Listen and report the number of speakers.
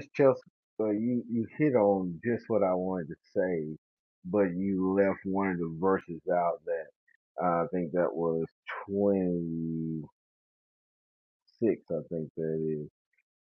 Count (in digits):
1